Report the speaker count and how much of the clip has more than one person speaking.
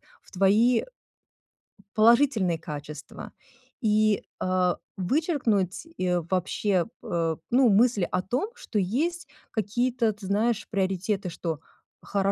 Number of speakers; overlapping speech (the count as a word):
one, no overlap